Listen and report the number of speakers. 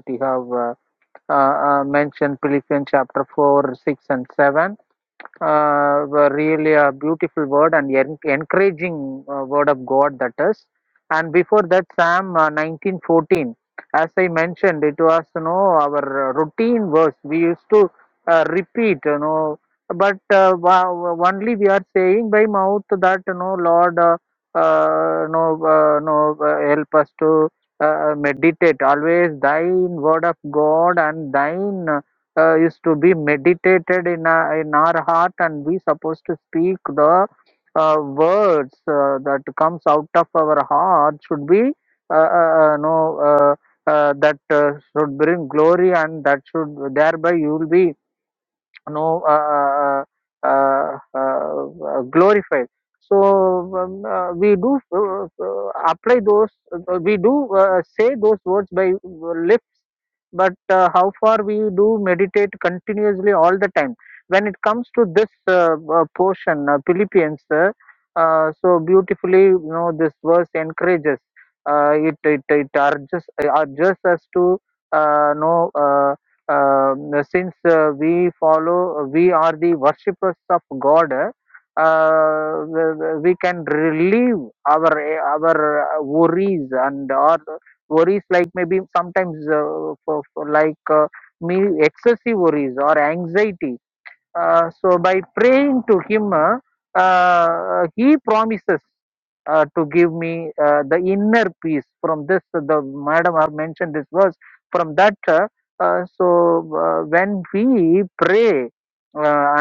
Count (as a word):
one